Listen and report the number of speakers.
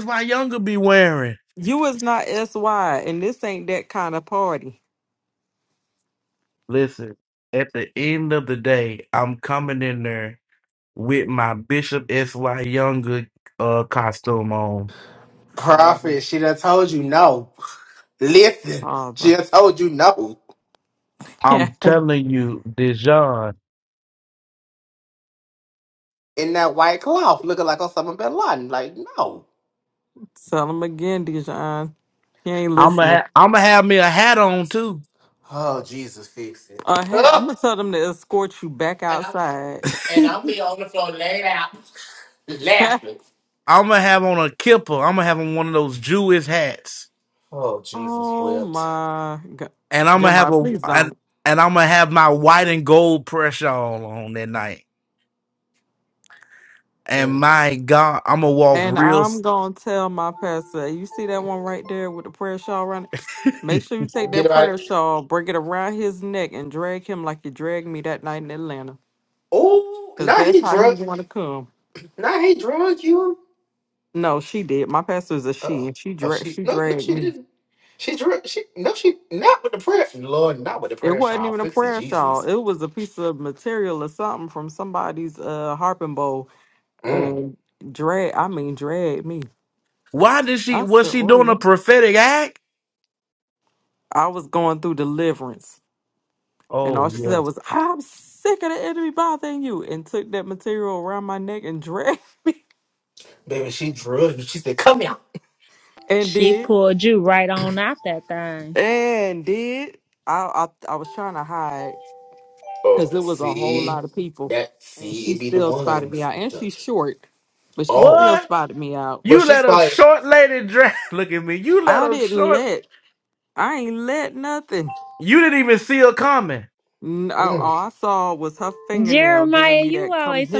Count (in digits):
4